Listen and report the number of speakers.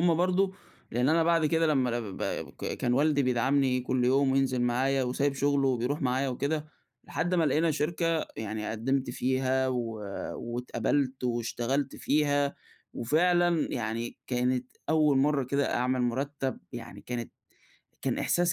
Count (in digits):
1